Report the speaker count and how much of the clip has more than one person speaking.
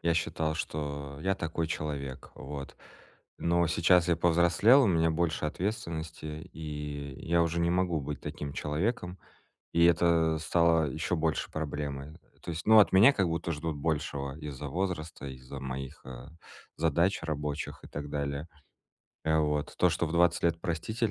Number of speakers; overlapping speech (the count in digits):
1, no overlap